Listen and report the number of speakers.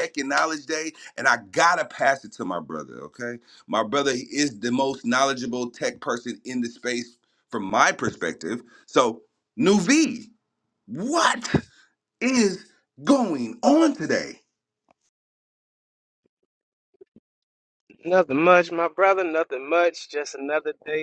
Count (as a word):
two